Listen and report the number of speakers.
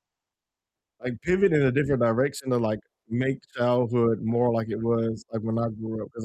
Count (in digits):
1